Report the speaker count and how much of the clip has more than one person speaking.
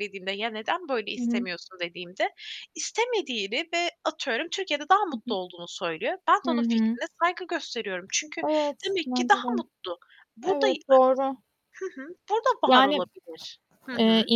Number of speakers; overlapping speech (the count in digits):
2, about 19%